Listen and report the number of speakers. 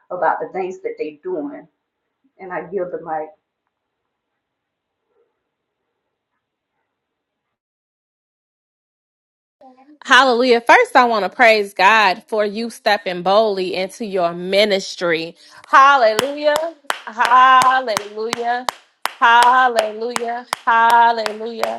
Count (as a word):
two